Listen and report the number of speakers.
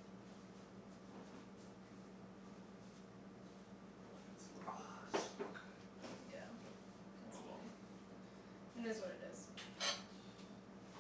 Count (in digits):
2